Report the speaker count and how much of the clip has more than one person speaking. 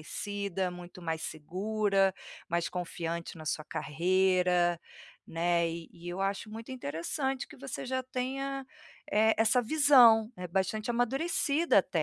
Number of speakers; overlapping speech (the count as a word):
one, no overlap